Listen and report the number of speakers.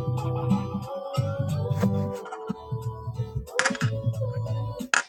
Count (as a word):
zero